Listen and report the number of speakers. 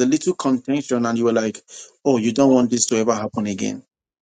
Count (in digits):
1